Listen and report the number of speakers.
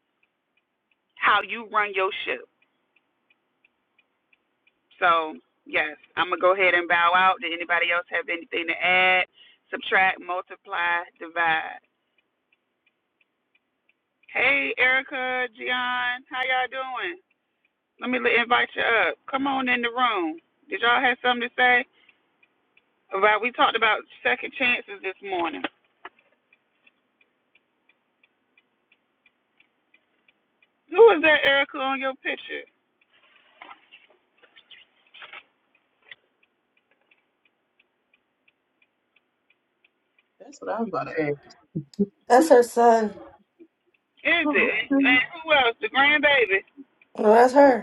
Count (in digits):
3